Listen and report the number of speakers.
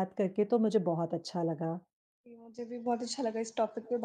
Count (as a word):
two